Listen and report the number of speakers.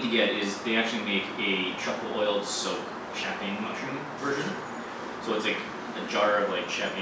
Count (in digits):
1